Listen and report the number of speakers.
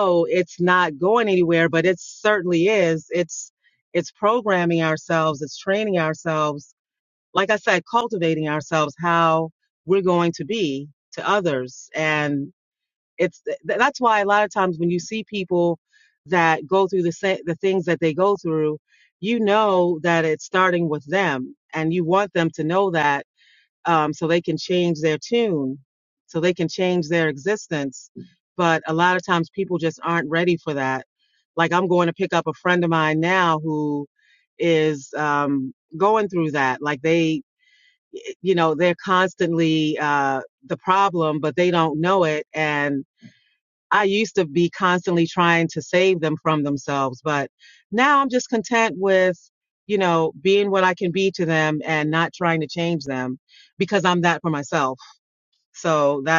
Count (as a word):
one